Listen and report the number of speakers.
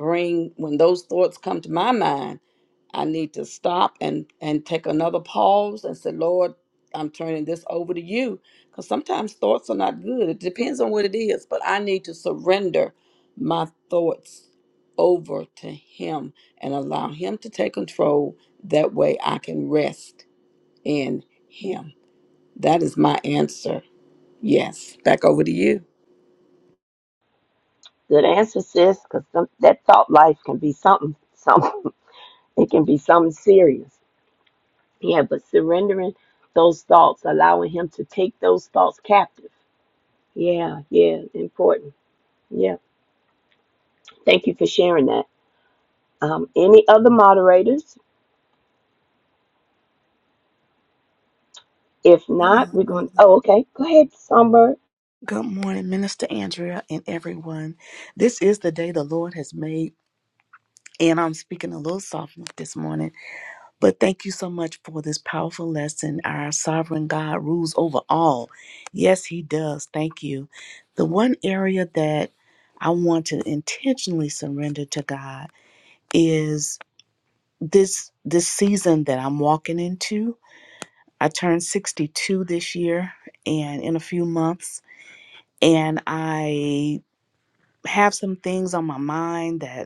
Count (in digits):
3